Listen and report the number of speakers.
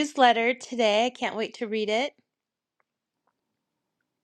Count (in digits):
1